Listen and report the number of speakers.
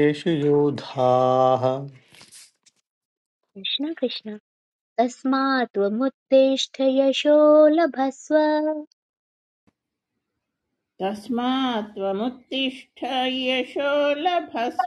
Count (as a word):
three